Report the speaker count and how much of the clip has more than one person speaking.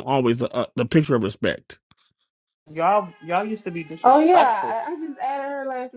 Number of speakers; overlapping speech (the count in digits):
3, about 12%